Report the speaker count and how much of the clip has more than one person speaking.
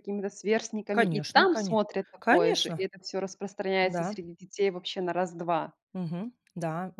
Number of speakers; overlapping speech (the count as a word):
two, about 25%